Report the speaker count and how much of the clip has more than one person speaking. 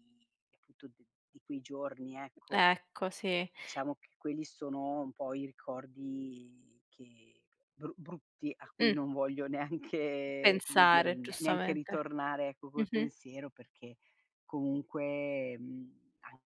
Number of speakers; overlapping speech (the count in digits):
2, about 13%